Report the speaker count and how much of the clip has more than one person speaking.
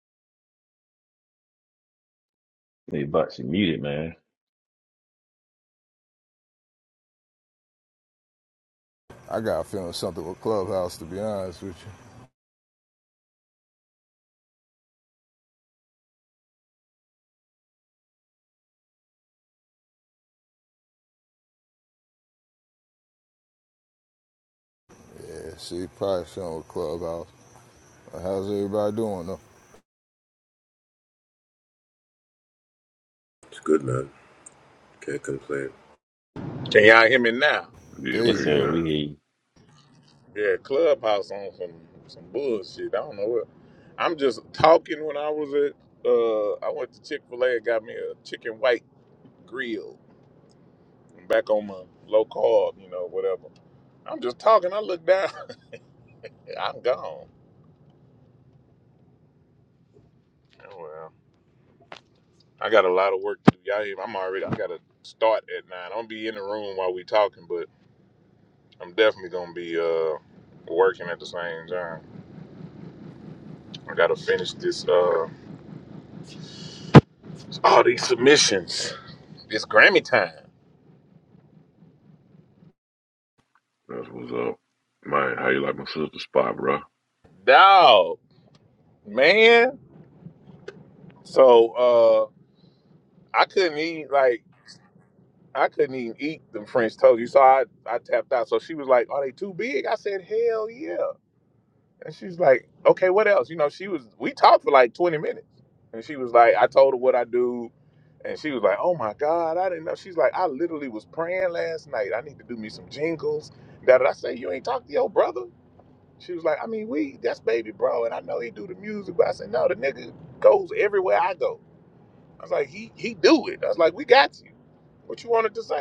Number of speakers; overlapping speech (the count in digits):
5, about 1%